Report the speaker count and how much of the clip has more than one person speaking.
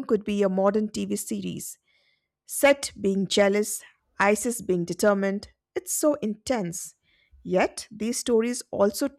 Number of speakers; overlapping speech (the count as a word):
one, no overlap